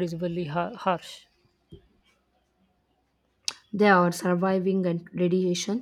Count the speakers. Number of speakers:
2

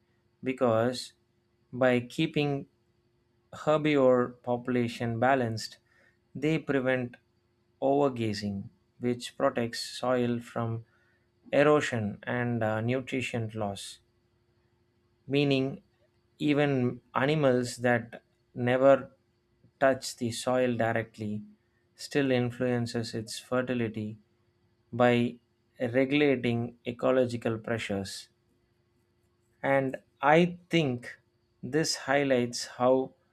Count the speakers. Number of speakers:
1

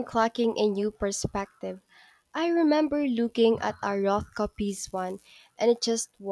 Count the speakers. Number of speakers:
1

